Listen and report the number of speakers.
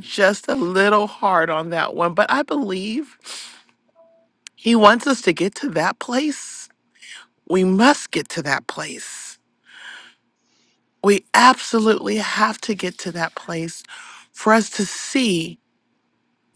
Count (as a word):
one